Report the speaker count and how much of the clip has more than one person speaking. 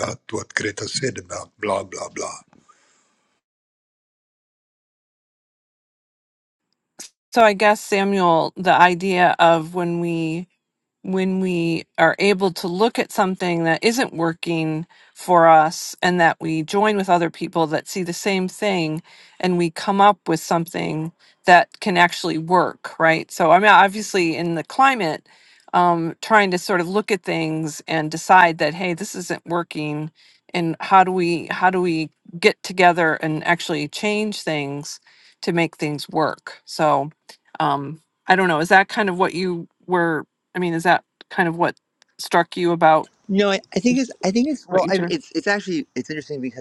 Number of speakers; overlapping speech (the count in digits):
3, about 1%